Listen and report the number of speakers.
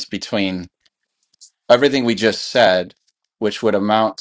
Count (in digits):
1